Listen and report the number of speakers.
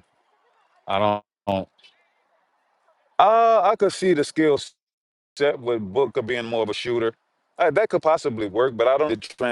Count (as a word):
one